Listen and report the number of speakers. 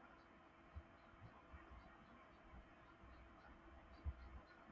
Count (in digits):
0